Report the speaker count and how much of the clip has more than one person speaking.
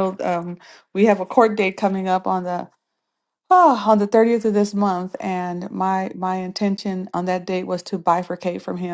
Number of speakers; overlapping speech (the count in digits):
1, no overlap